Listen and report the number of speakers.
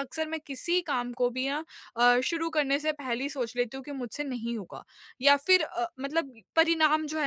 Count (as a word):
one